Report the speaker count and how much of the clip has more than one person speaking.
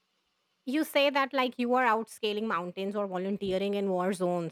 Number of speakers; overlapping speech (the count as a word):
one, no overlap